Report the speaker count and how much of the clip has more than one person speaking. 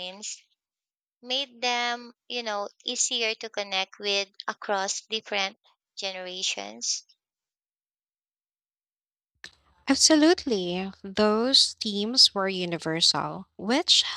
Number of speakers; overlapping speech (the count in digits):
2, no overlap